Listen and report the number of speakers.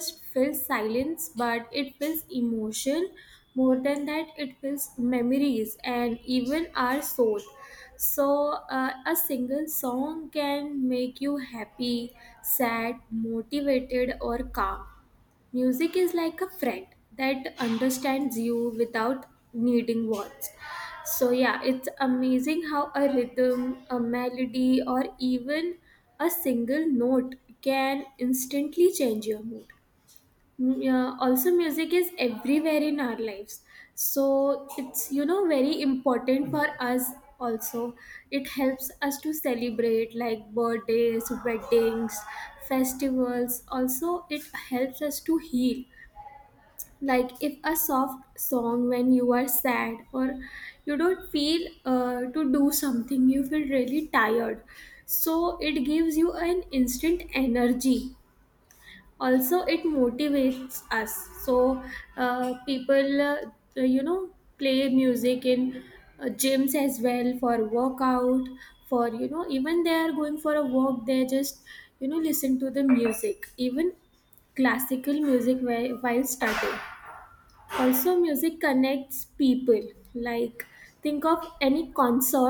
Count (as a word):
one